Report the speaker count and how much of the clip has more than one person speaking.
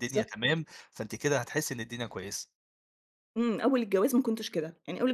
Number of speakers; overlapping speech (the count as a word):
two, about 2%